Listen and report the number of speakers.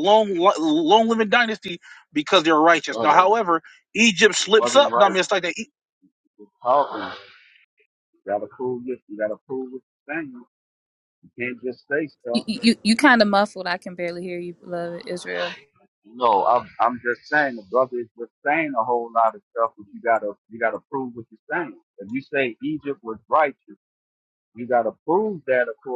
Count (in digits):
3